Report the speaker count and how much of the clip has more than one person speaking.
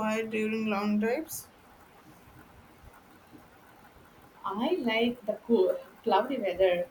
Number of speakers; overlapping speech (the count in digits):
2, no overlap